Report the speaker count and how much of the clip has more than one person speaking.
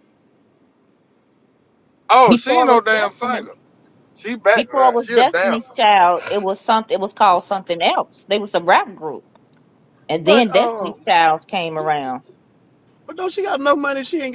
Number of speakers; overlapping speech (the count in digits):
3, about 18%